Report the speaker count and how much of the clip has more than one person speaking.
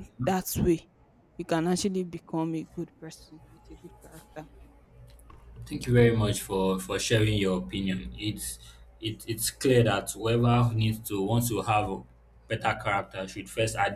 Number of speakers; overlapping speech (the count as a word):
two, no overlap